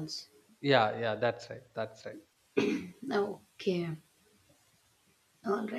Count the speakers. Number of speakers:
two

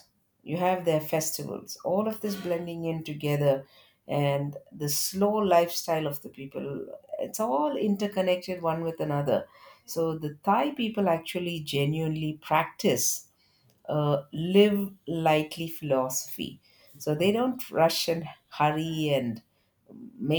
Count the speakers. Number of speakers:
one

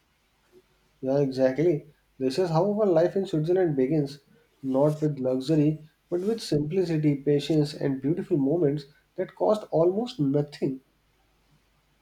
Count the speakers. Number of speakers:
one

